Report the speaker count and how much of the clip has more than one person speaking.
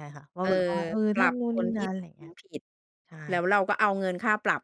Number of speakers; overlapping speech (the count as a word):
two, about 19%